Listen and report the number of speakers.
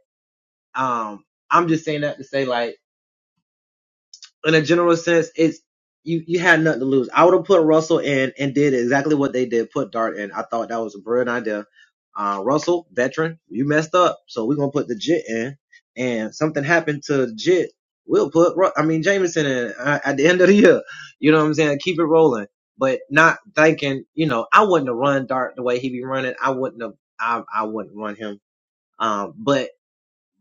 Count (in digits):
1